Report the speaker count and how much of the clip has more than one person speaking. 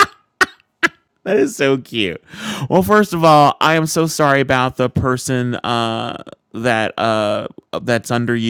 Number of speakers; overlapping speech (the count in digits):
1, no overlap